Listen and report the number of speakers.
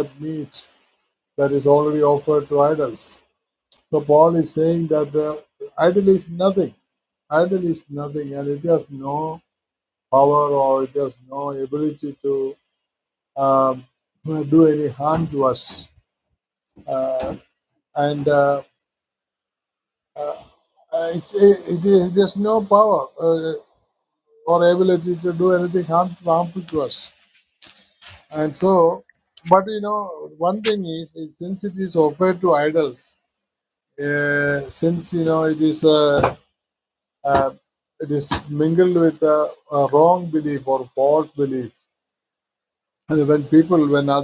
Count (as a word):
one